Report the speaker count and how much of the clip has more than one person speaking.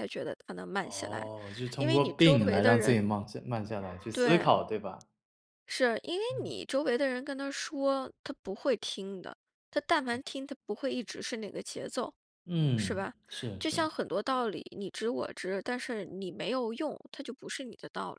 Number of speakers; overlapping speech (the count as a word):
two, about 13%